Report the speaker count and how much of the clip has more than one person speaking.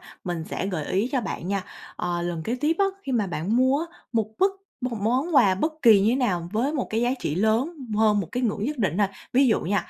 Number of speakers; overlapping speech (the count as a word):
one, no overlap